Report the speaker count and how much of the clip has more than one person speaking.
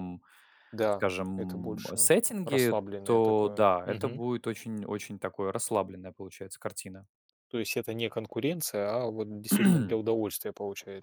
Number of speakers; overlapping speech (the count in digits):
2, about 22%